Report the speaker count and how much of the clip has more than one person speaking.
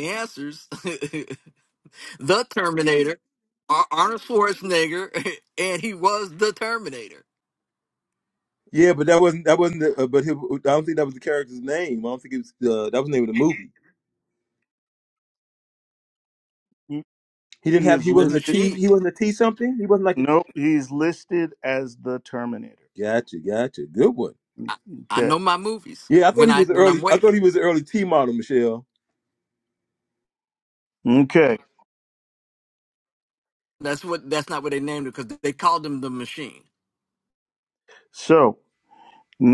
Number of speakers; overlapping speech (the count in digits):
3, about 6%